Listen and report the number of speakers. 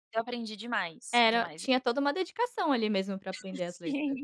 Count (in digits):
2